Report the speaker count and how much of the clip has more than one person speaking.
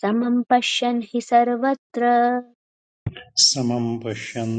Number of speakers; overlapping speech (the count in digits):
2, no overlap